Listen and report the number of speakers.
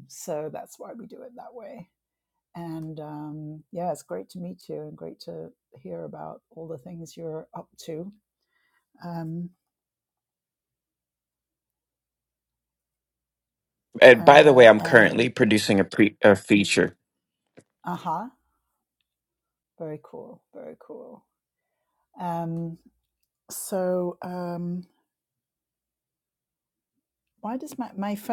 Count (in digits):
2